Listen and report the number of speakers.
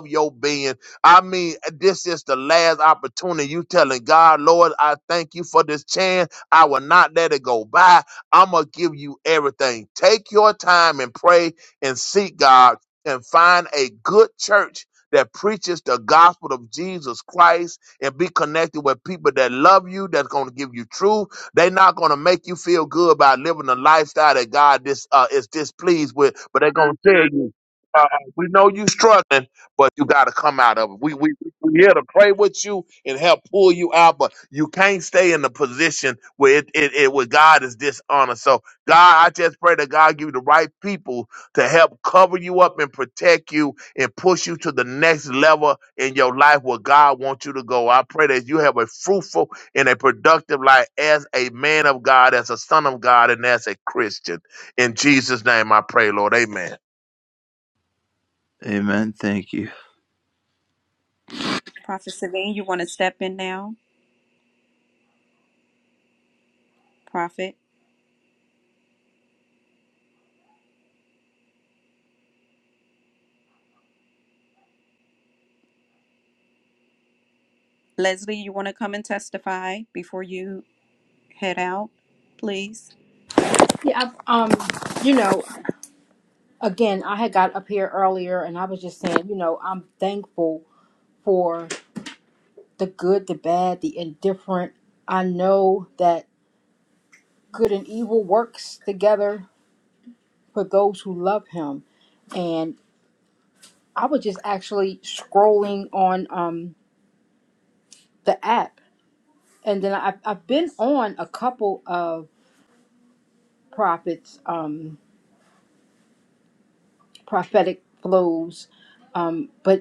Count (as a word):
four